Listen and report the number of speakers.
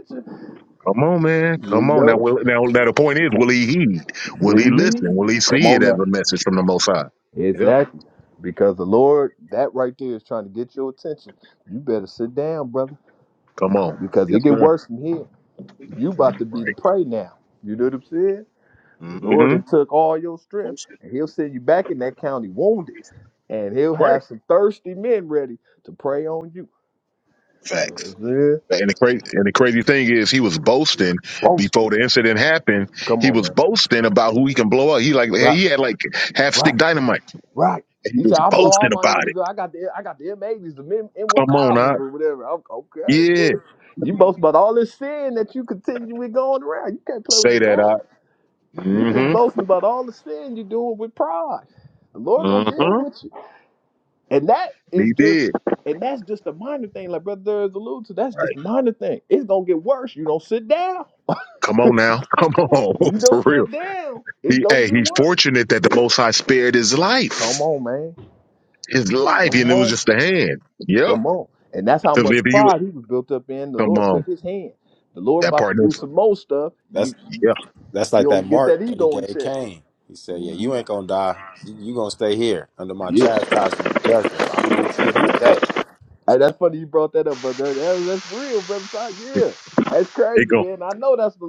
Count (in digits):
3